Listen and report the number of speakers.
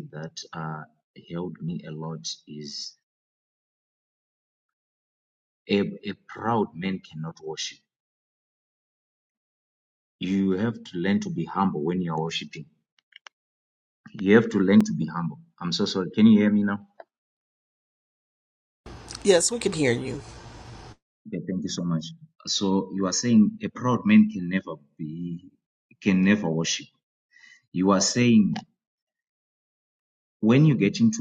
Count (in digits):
2